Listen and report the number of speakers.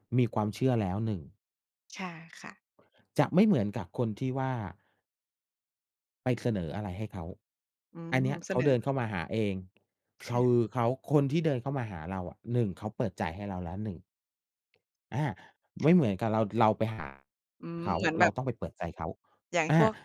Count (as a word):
two